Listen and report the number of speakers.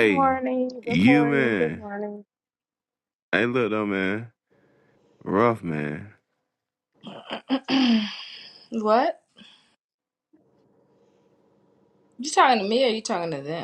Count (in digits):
3